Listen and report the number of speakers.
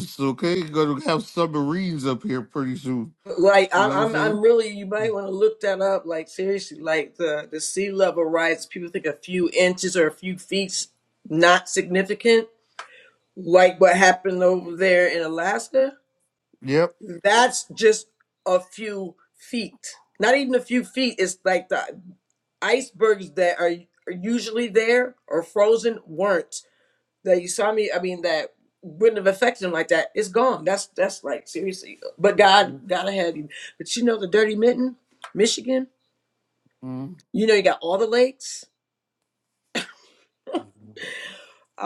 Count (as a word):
two